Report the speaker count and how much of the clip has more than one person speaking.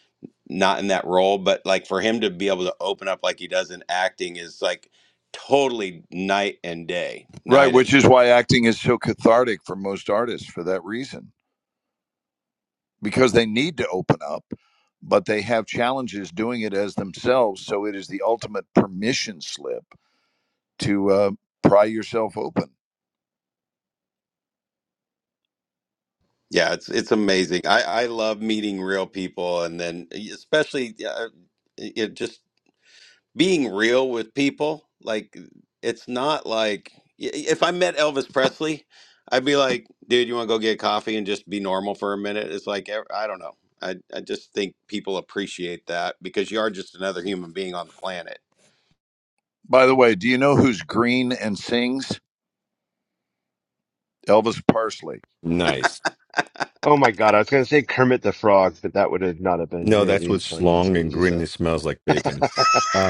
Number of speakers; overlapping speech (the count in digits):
4, about 3%